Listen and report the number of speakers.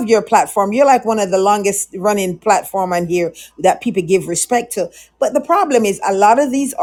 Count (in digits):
1